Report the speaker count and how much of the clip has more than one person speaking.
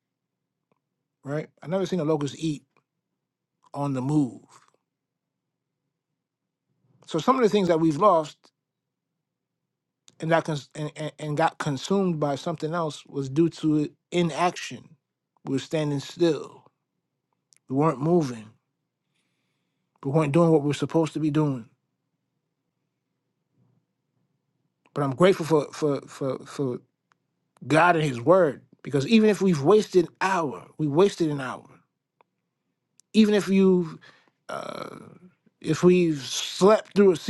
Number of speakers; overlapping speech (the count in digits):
1, no overlap